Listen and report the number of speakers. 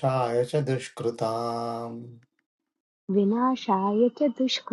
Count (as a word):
two